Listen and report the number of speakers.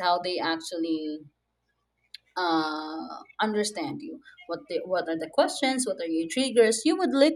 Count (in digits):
1